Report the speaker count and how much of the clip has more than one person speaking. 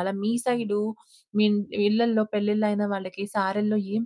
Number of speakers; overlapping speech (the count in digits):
1, no overlap